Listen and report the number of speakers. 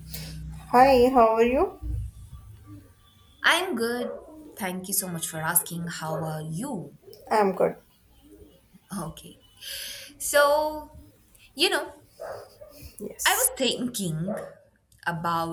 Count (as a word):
two